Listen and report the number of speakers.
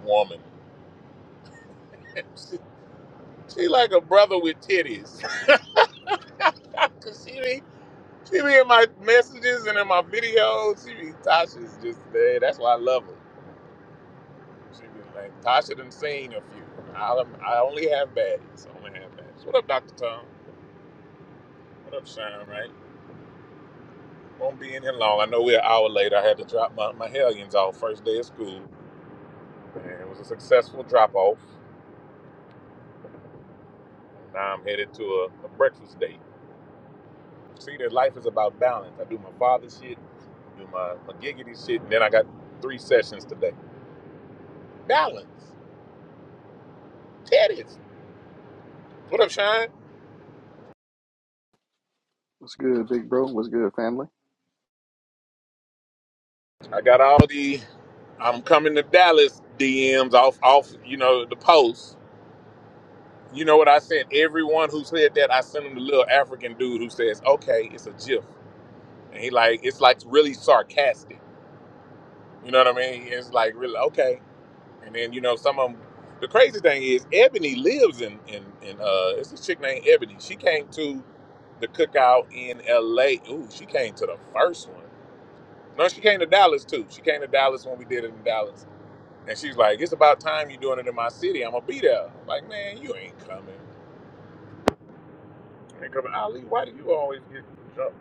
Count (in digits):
2